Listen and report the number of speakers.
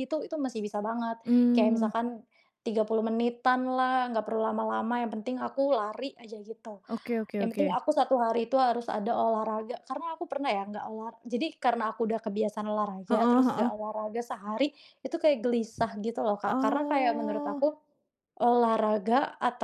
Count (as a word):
two